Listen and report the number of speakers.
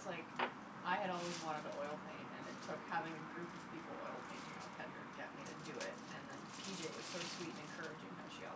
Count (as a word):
one